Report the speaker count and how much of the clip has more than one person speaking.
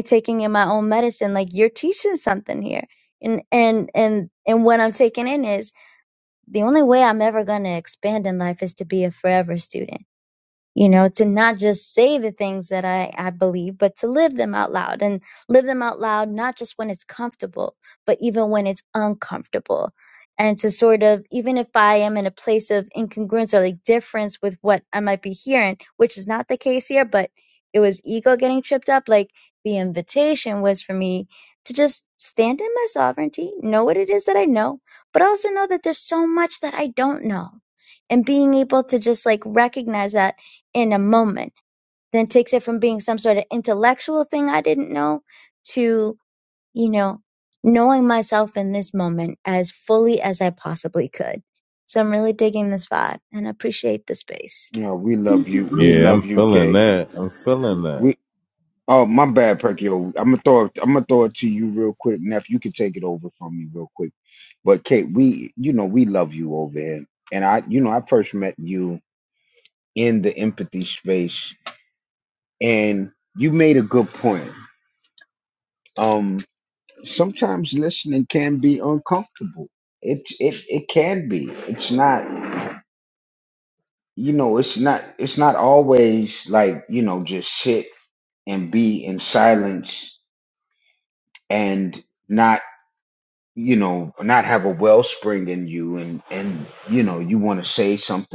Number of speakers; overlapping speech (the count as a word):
three, about 1%